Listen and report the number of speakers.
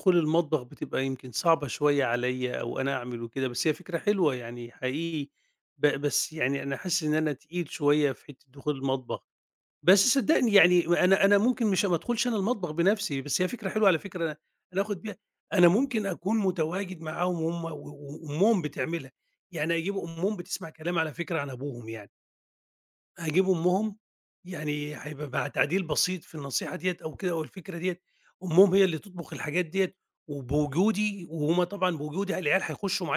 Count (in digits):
1